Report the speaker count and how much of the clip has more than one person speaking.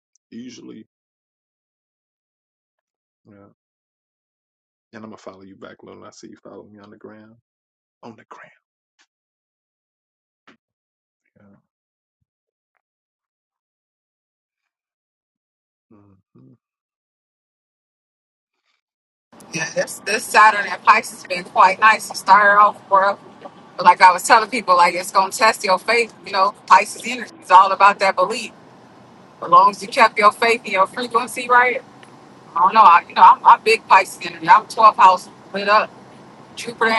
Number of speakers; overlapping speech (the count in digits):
2, no overlap